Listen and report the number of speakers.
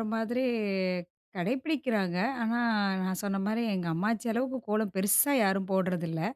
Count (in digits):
1